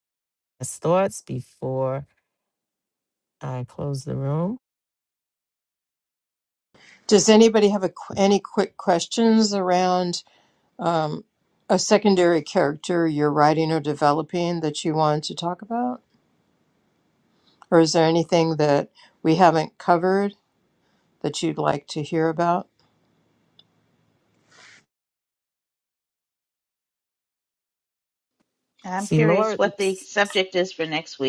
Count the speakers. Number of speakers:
3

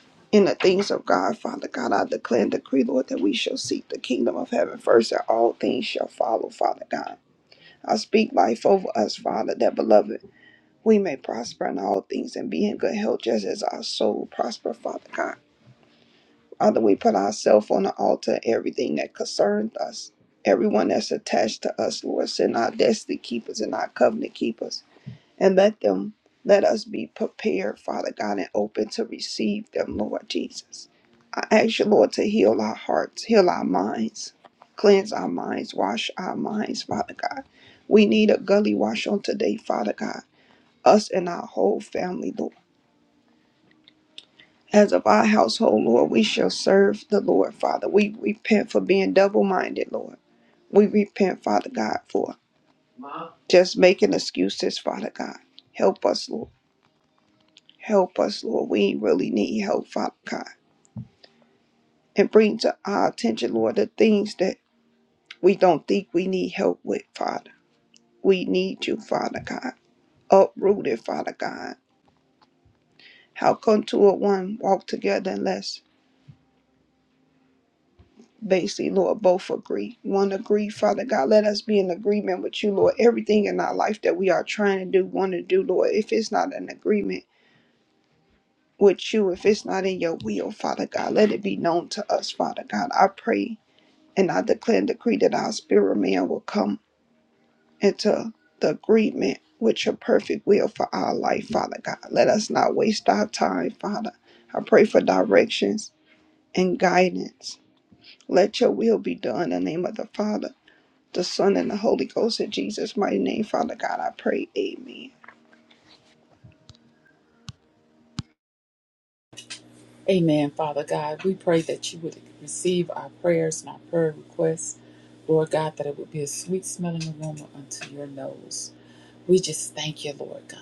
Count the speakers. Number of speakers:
2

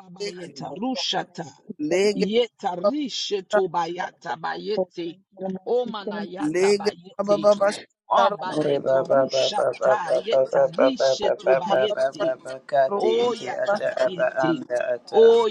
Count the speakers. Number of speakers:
3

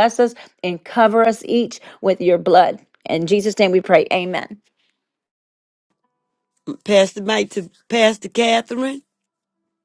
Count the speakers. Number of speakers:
2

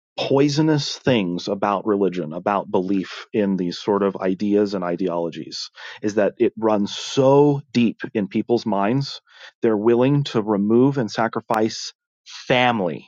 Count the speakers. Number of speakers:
1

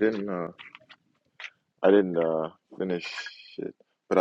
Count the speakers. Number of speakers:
1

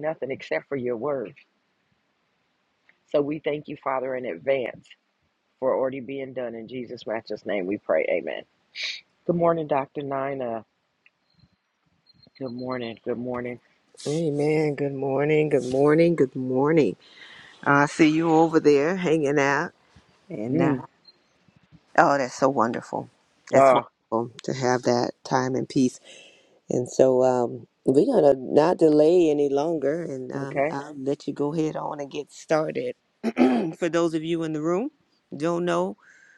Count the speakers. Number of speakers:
2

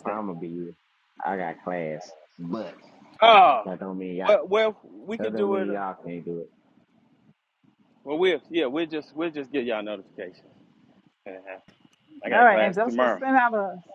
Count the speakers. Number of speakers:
3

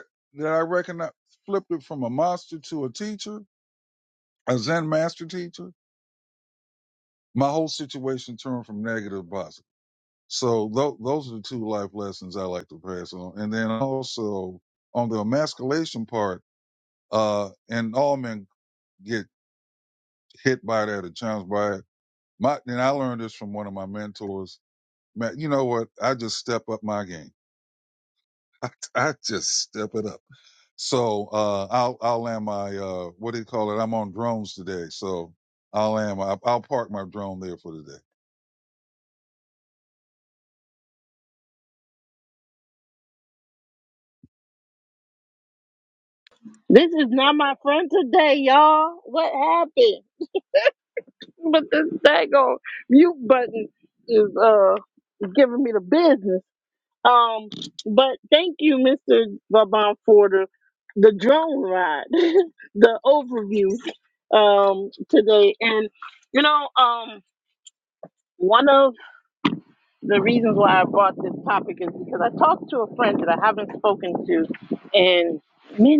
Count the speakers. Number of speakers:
2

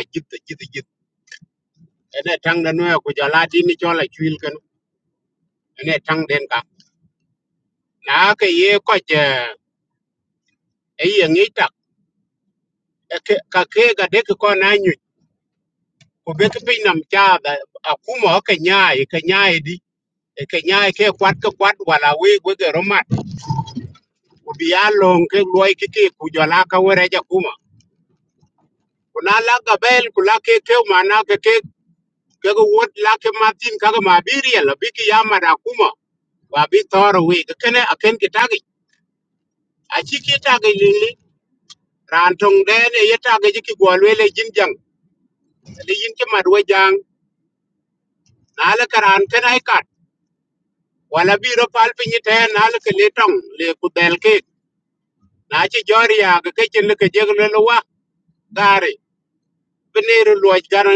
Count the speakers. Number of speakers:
1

